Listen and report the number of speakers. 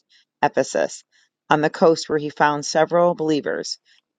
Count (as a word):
one